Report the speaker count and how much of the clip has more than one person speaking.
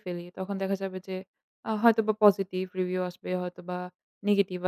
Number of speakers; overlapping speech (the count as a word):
one, no overlap